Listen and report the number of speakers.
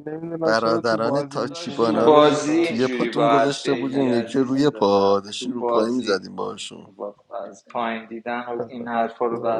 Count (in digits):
3